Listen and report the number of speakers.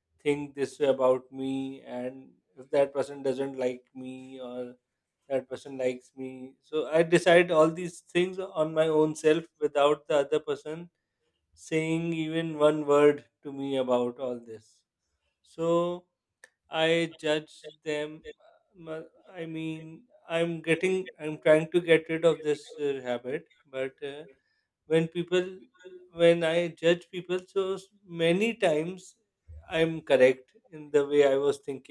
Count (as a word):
one